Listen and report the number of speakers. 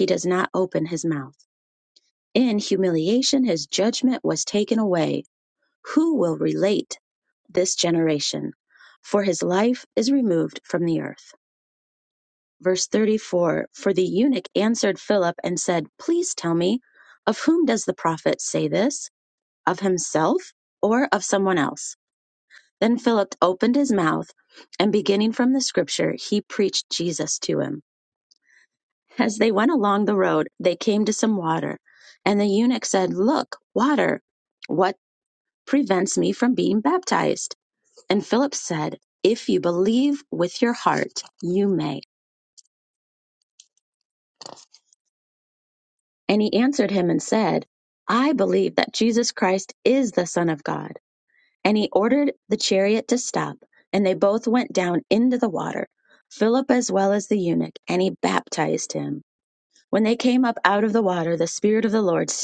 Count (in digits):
1